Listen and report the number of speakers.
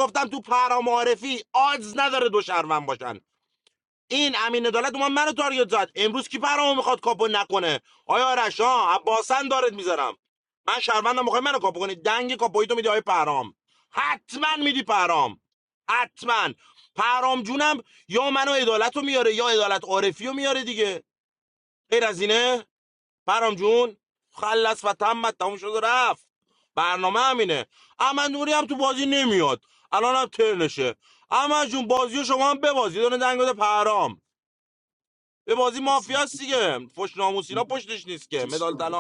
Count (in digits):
1